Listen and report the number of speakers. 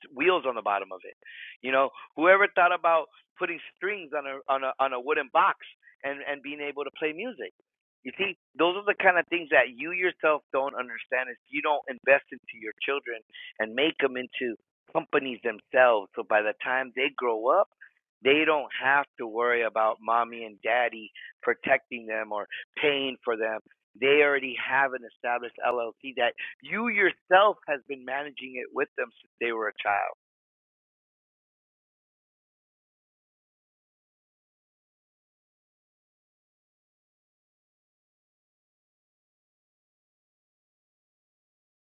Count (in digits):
1